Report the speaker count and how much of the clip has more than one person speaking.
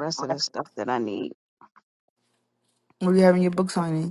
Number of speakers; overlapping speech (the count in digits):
2, no overlap